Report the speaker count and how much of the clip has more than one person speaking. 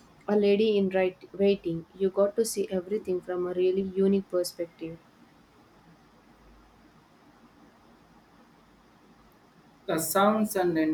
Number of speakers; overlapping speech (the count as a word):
two, no overlap